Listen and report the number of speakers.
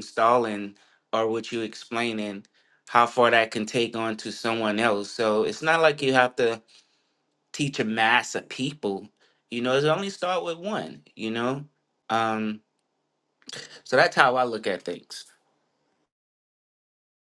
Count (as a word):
one